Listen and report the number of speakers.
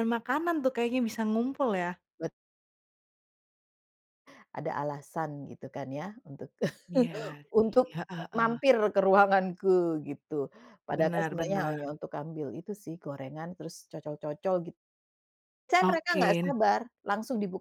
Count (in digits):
2